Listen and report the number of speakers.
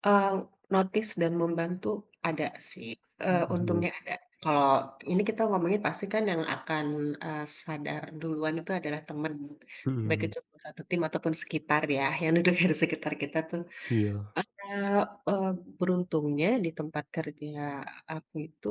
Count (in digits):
2